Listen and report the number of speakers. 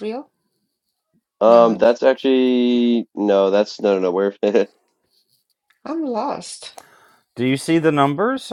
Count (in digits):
3